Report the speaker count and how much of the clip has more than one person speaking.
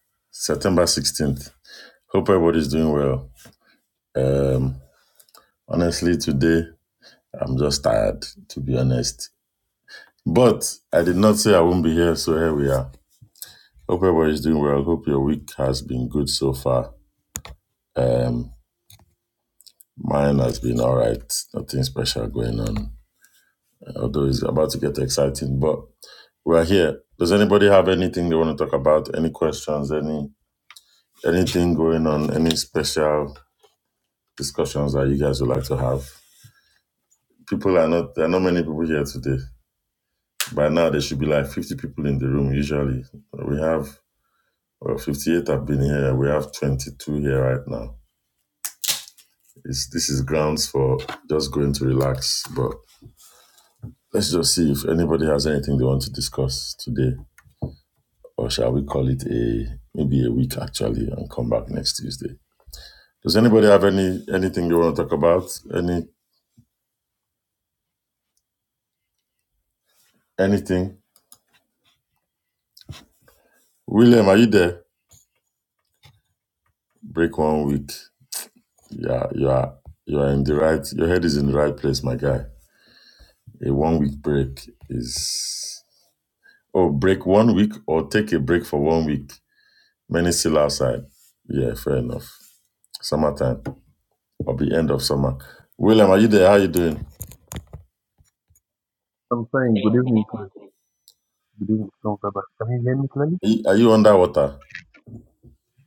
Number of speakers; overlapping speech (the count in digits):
2, no overlap